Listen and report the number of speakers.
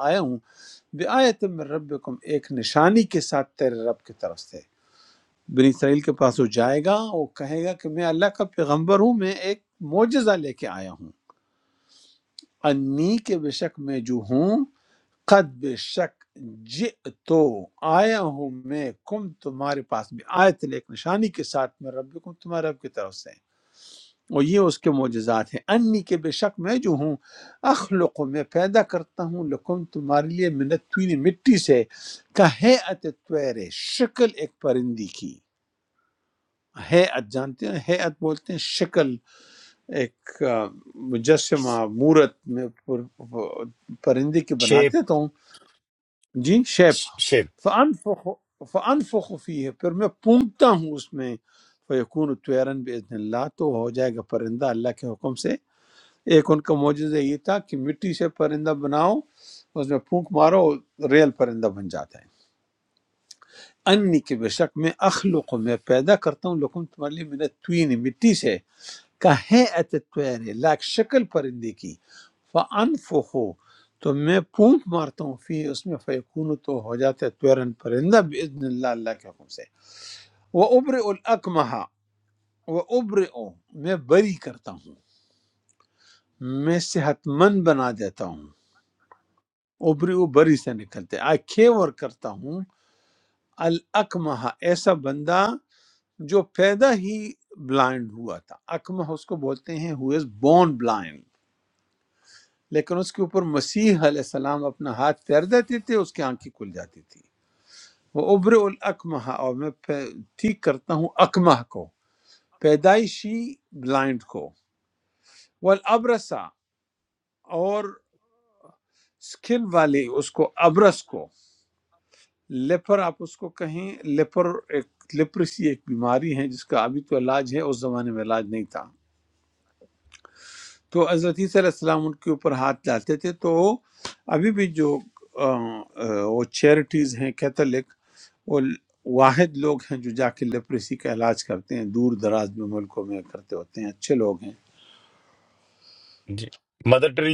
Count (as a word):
two